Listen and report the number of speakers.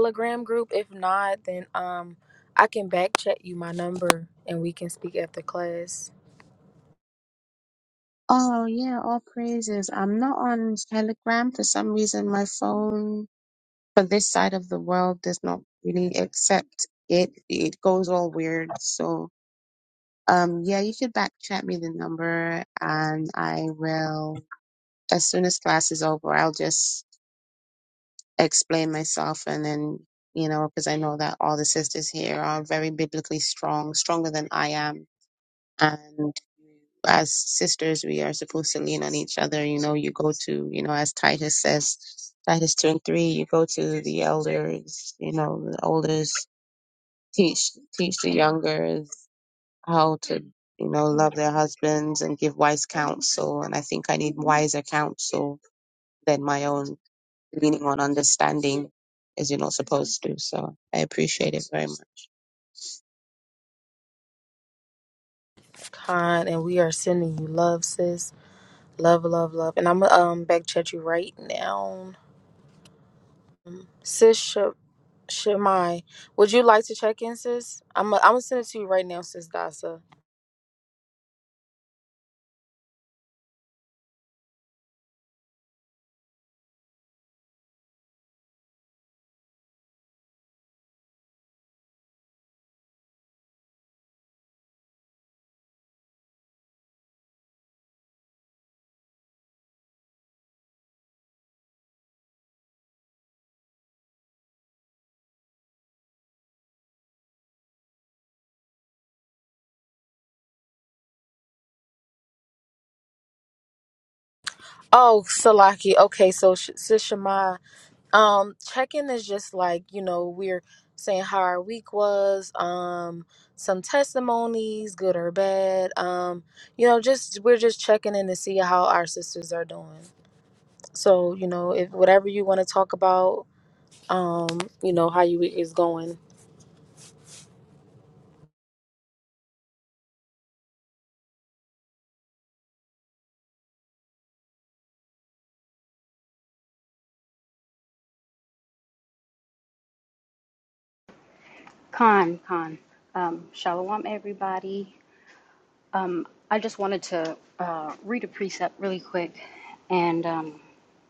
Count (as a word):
three